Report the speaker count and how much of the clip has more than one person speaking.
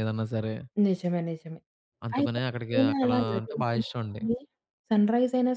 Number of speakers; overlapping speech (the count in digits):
2, about 25%